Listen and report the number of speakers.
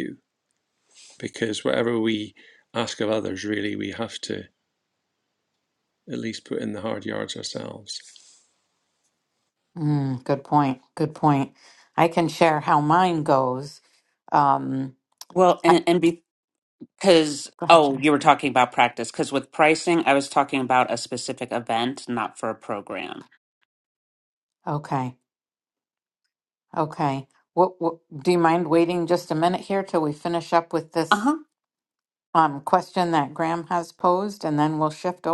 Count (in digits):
3